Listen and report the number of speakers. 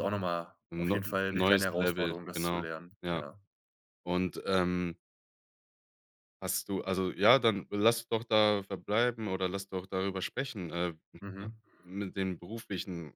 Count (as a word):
two